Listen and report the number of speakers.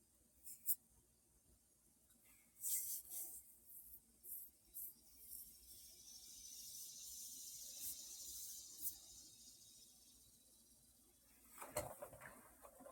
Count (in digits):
0